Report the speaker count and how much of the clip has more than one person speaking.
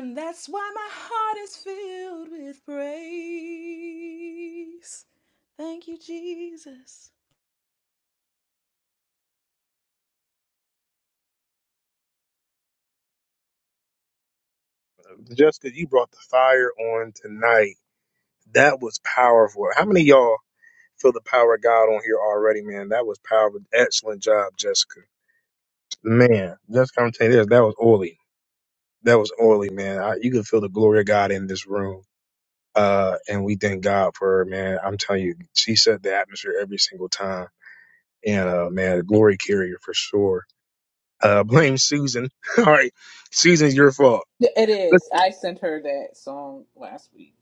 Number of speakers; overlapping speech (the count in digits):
3, under 1%